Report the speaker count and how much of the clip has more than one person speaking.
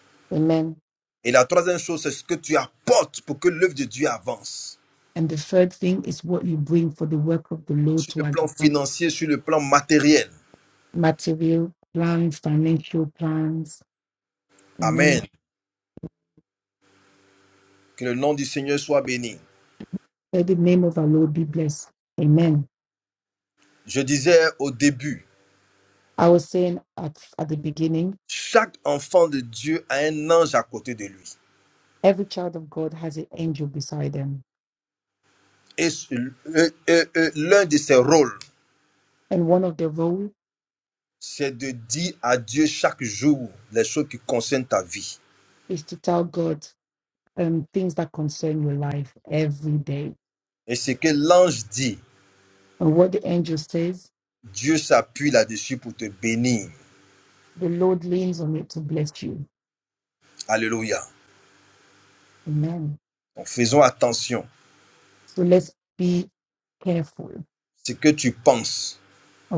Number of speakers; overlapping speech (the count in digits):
2, about 2%